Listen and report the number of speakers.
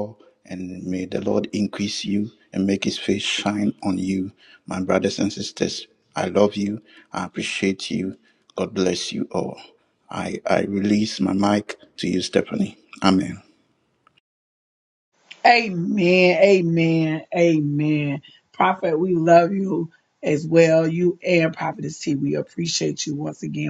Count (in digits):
2